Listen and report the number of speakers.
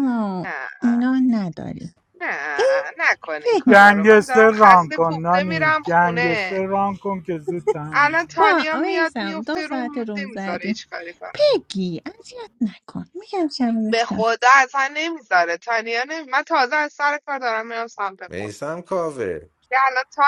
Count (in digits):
4